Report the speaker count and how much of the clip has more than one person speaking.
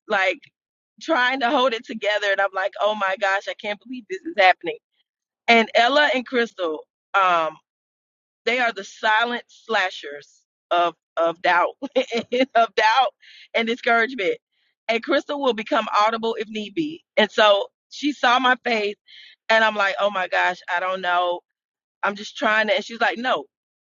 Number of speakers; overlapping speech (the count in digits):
1, no overlap